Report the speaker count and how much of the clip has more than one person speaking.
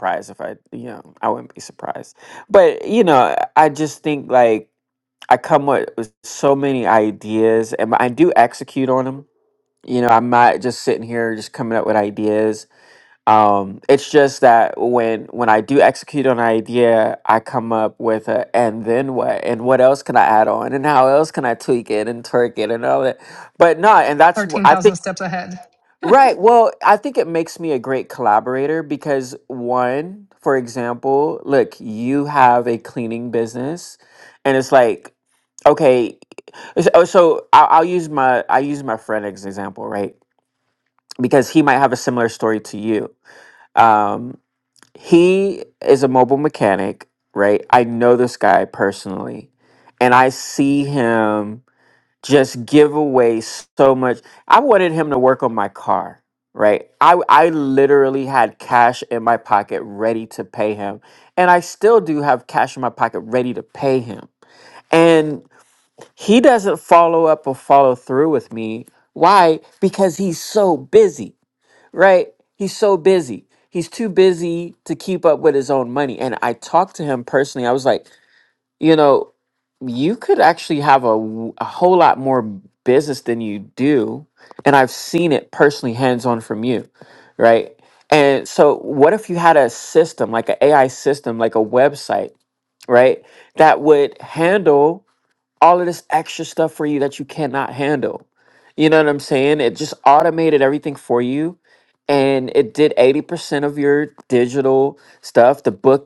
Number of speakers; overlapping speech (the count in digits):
2, about 1%